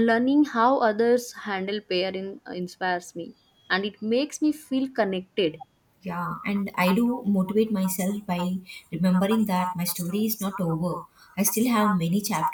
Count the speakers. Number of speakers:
2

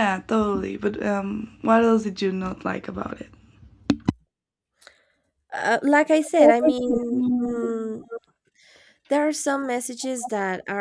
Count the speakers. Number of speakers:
2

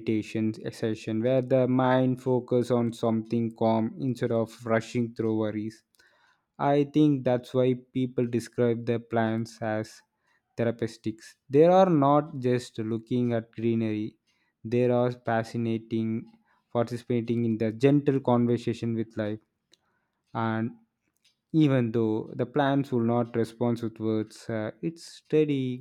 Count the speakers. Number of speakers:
1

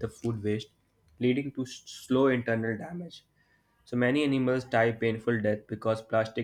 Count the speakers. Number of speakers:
1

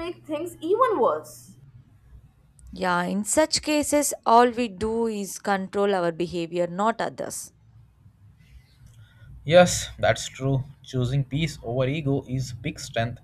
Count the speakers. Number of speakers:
3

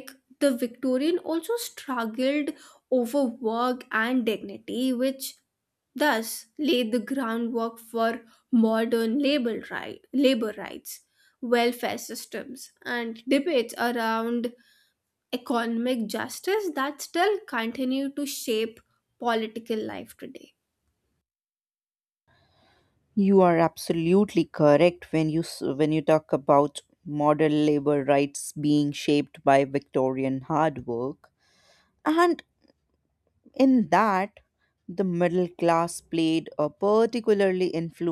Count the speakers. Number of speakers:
2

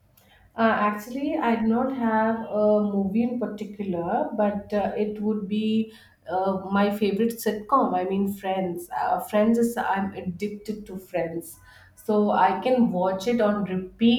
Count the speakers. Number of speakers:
1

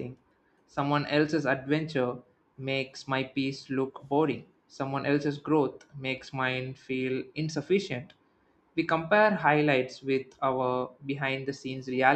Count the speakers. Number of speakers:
1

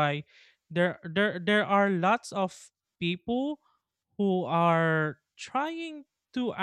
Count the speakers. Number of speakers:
1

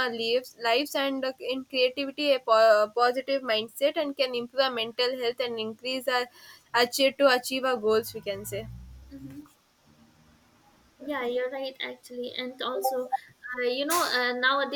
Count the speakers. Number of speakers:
2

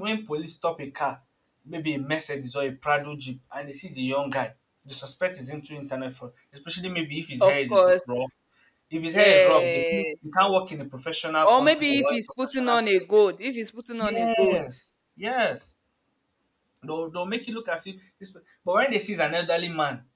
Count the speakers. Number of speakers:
2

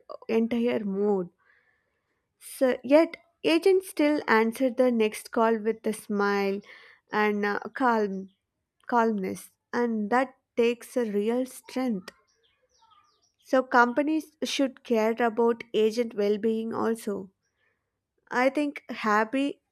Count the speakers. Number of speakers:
1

